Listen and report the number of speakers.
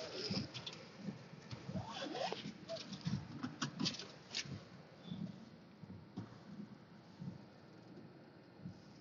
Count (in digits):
0